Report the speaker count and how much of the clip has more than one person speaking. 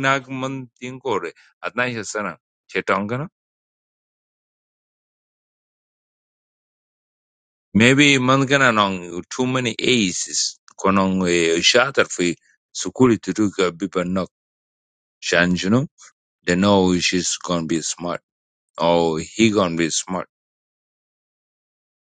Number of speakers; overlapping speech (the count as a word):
one, no overlap